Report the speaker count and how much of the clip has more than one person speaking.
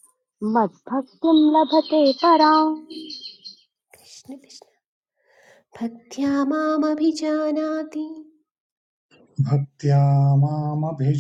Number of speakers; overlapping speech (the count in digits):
3, no overlap